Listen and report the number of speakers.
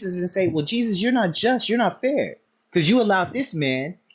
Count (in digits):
1